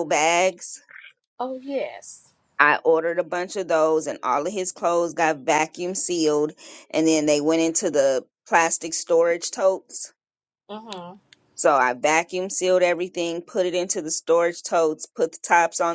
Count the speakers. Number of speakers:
two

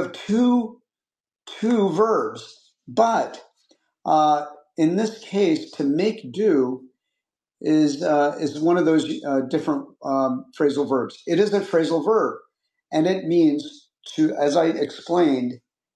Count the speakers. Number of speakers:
one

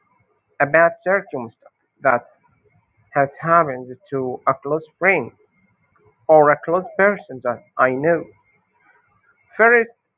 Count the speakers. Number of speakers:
one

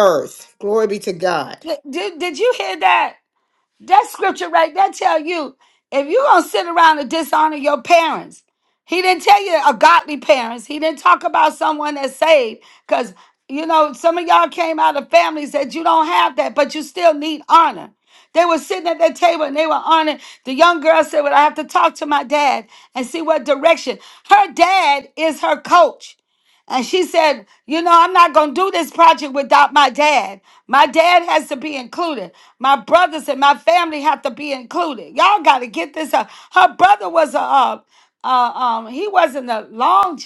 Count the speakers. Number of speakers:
two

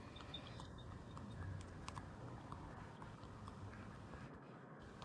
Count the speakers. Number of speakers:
zero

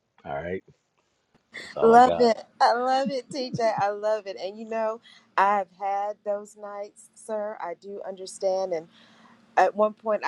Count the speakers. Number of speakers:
two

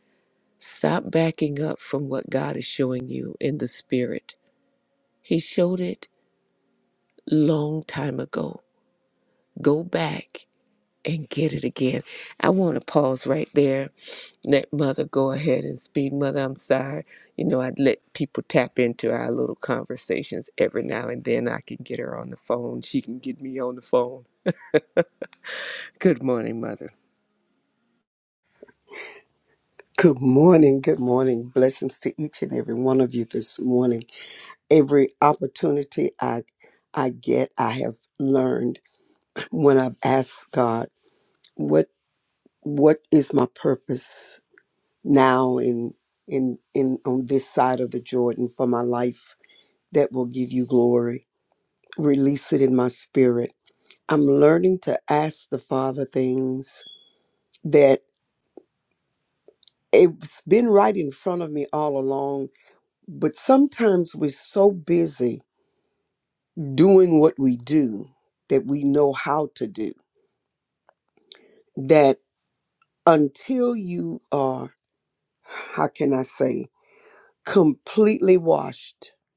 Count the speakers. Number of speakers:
two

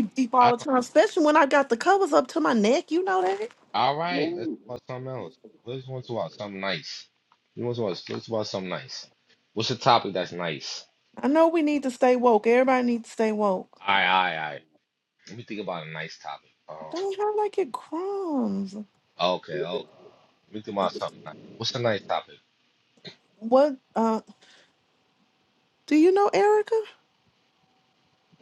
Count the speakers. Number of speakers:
two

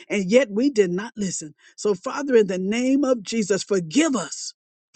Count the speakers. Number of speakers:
one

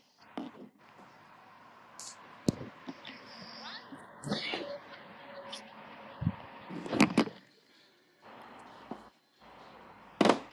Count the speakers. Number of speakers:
zero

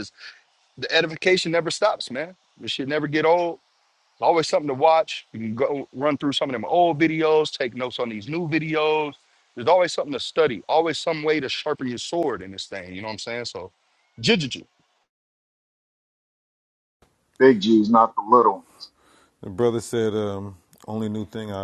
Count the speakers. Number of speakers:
three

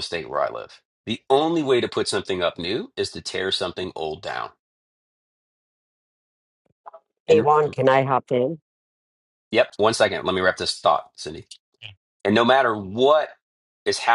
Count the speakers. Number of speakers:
two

